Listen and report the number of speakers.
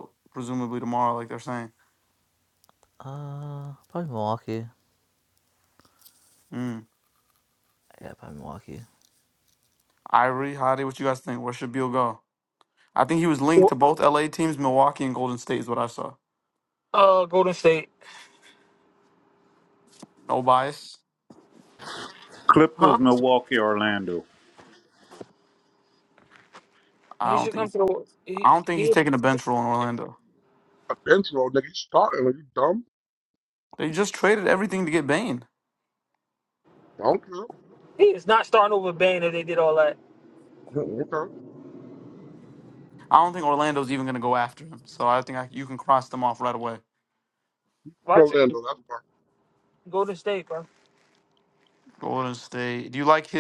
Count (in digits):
5